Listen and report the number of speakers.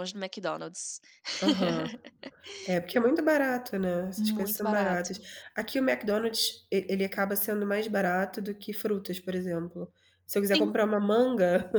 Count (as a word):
two